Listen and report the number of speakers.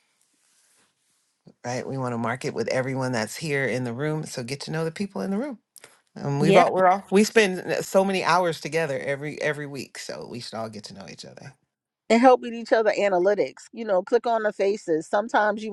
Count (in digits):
2